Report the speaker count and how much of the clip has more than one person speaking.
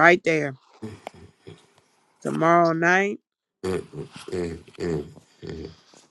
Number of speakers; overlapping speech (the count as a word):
two, no overlap